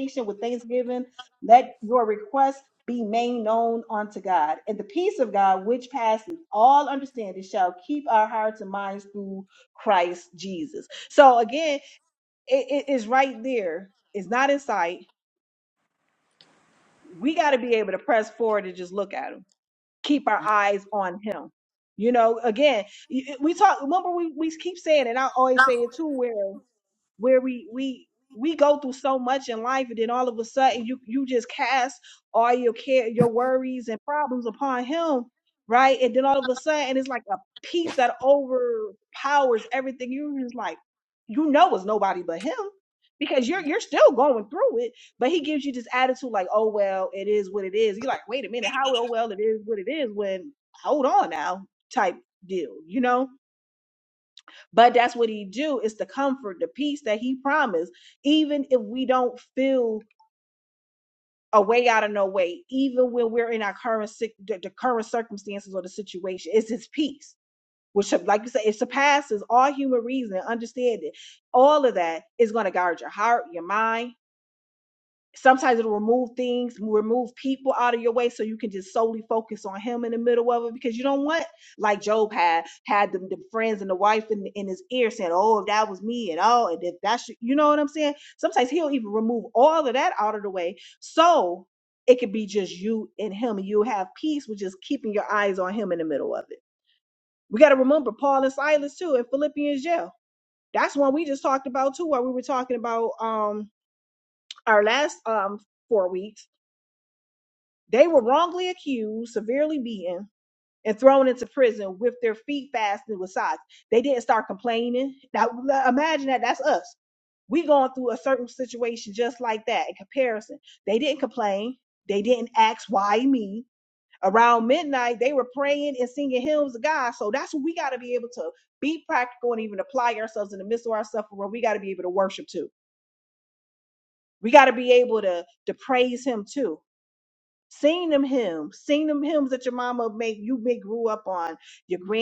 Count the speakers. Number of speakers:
one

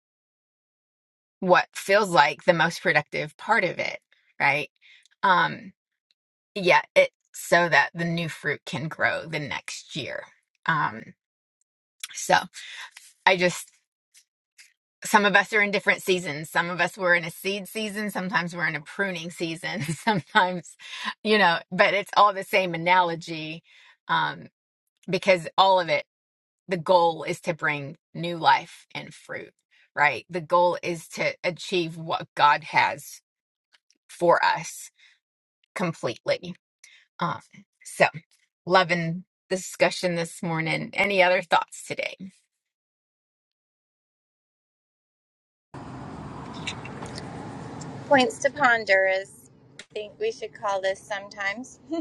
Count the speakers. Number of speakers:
two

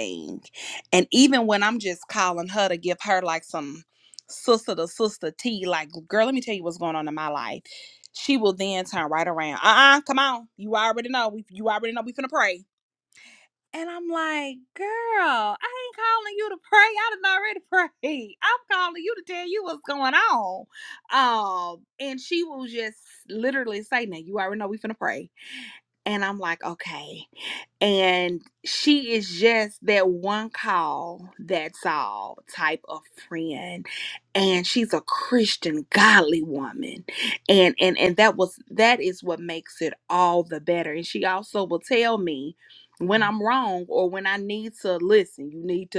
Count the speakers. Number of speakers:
one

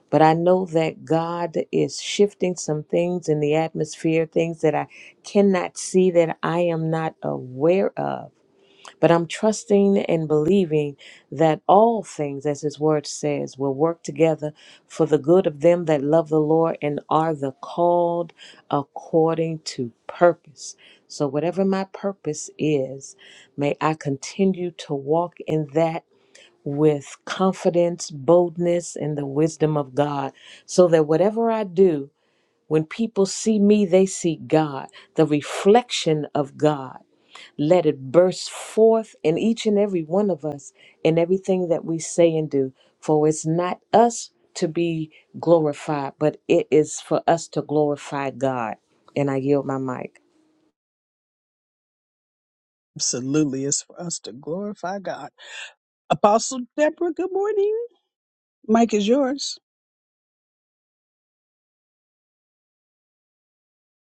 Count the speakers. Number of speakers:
two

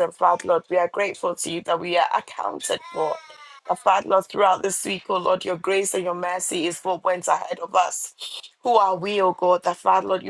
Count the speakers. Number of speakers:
one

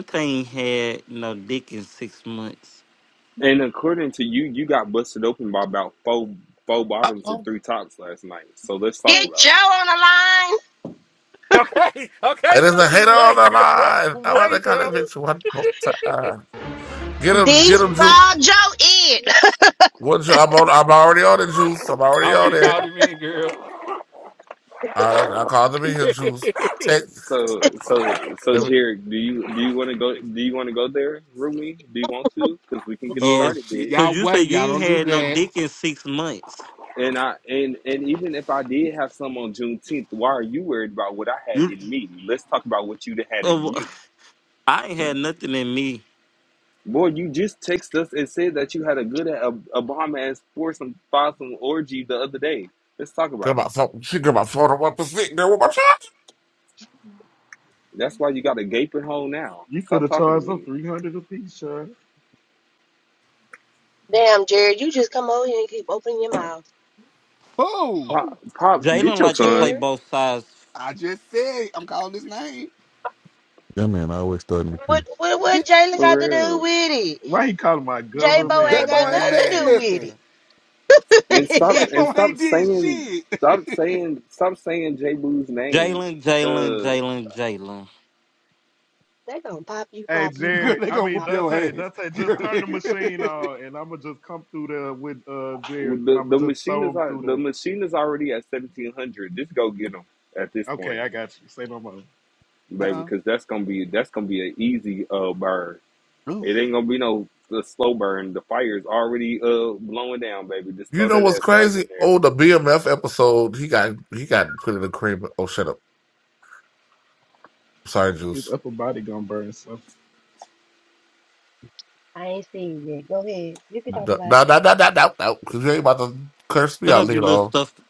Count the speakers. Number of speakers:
seven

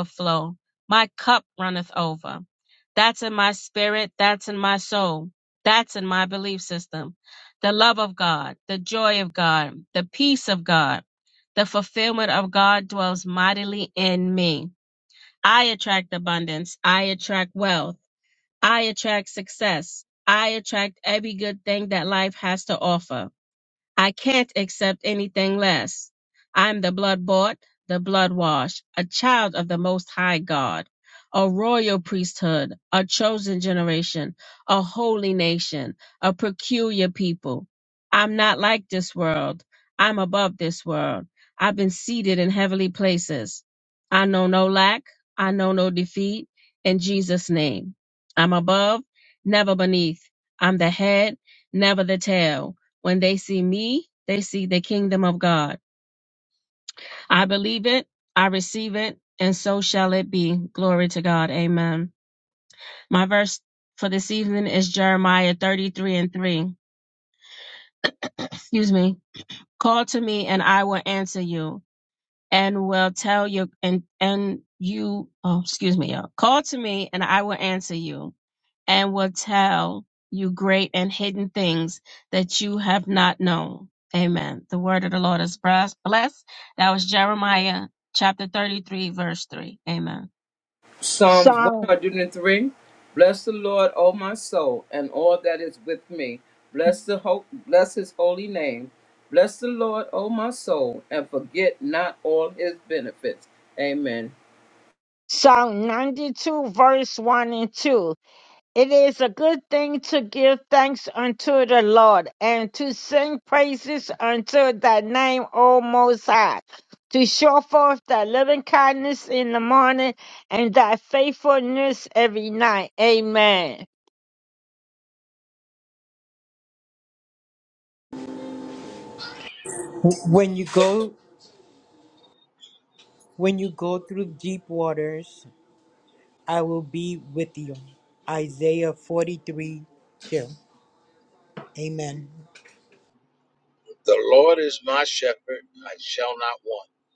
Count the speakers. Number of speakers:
five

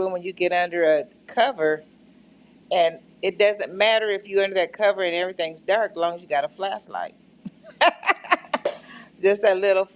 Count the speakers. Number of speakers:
one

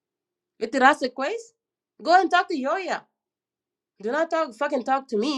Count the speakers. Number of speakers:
one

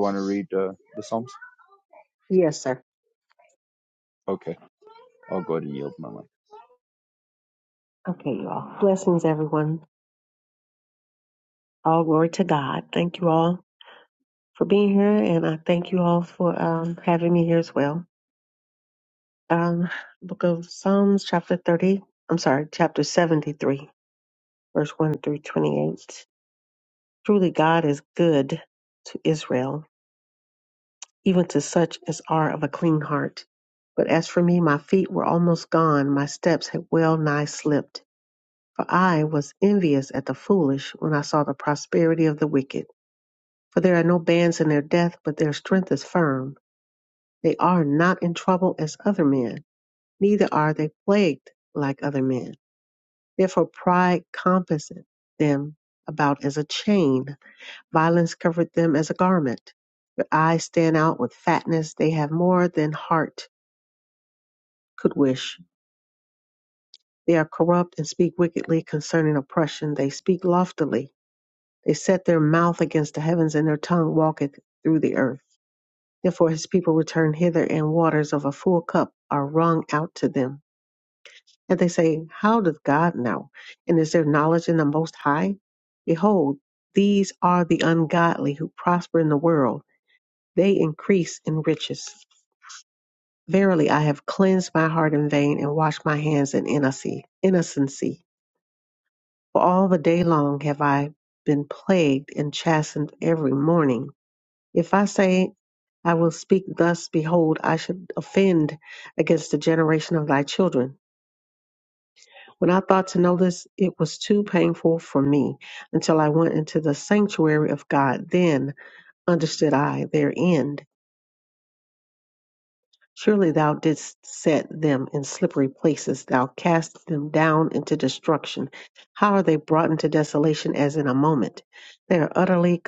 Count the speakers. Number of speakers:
two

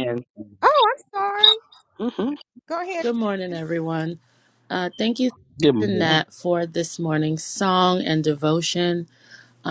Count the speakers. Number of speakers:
three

